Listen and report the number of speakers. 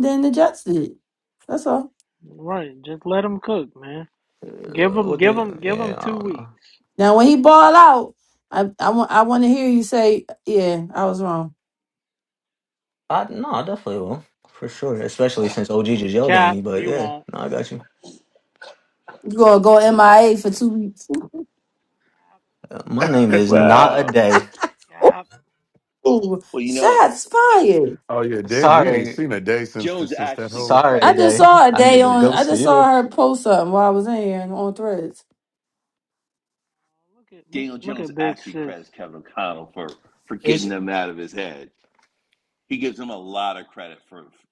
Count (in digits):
5